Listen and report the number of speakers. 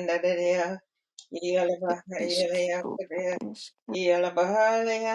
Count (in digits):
2